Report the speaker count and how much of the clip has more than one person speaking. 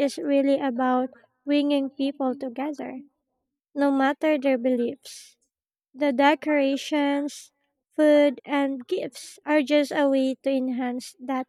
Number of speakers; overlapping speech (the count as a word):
one, no overlap